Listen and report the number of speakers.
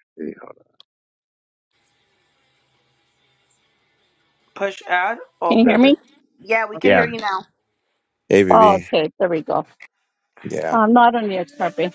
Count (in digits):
3